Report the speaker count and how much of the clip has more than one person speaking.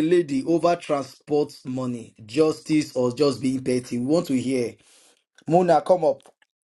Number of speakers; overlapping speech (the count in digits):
1, no overlap